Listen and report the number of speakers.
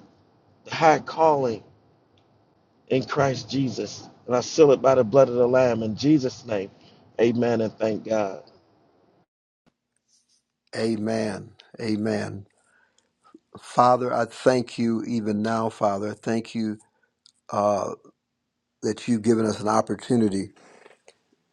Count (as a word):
two